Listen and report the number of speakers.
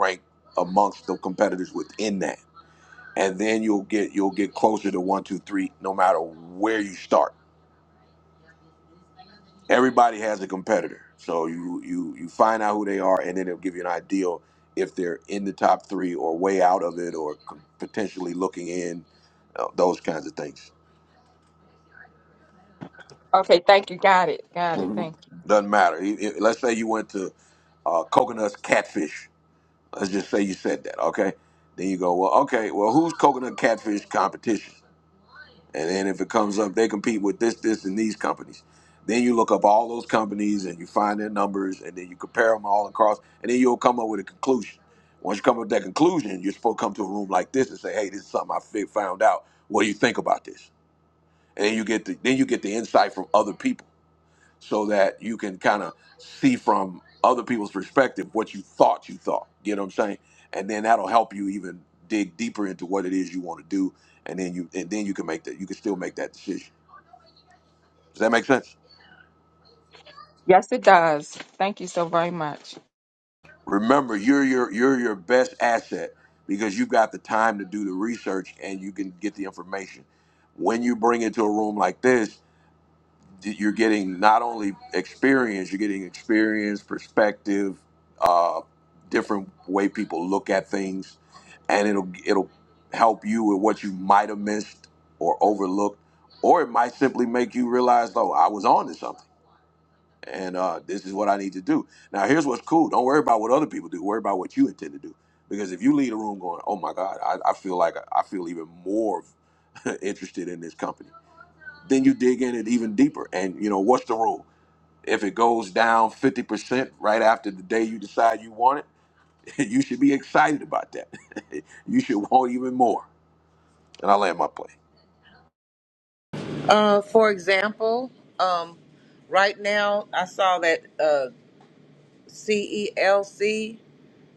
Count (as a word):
three